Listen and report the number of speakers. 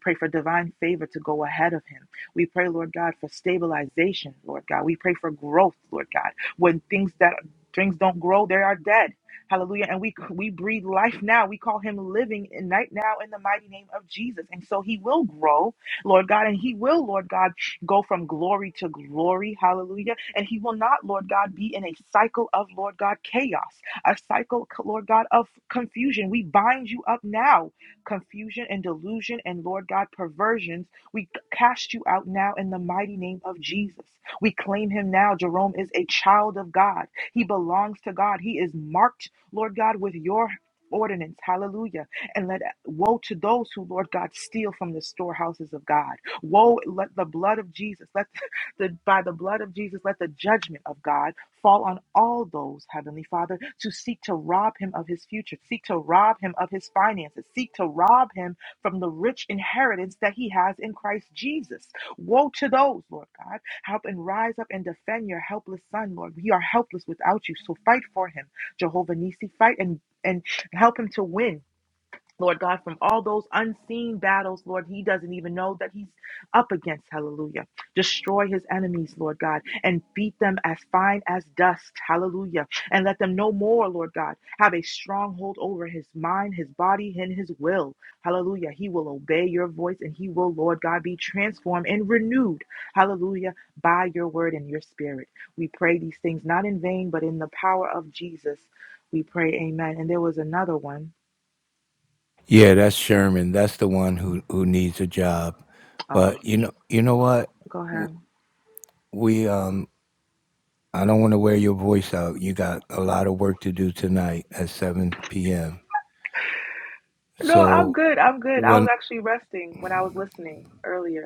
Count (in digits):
2